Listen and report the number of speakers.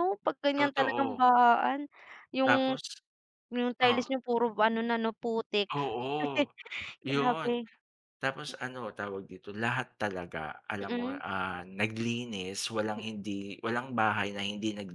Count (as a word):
two